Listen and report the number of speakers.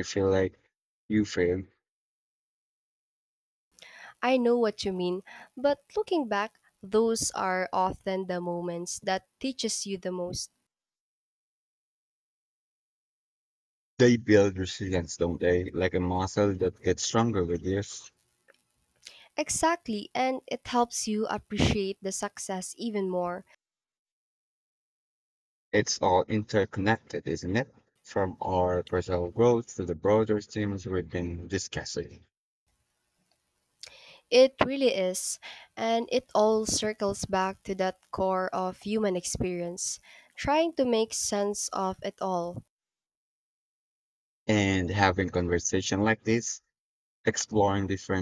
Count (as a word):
two